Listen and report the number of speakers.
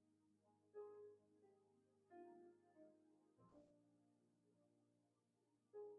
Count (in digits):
0